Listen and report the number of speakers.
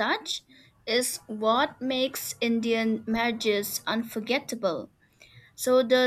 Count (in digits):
1